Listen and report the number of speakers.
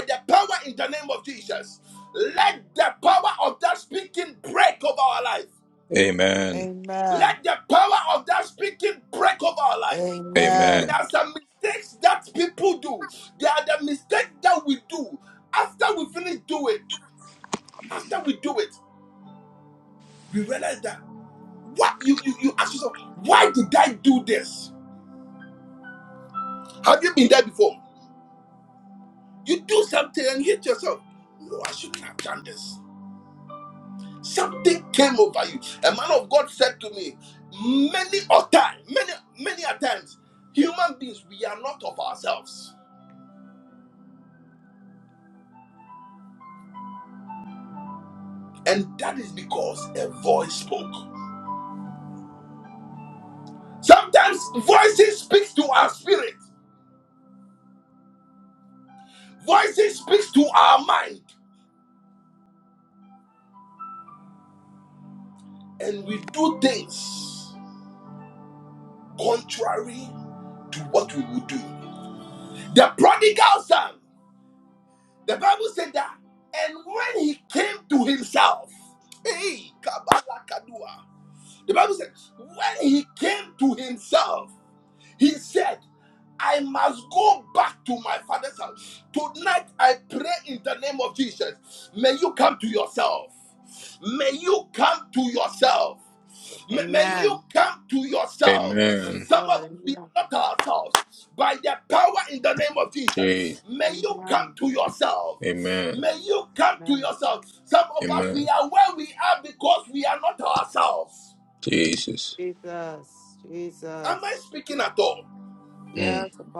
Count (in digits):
3